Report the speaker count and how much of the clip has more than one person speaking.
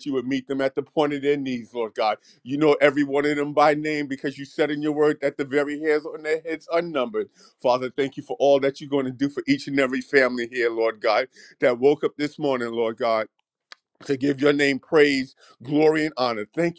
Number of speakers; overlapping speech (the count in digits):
1, no overlap